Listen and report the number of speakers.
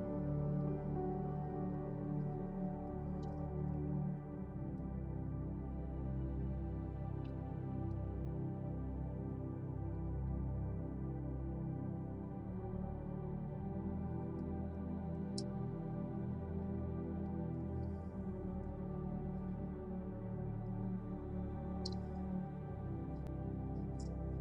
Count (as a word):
zero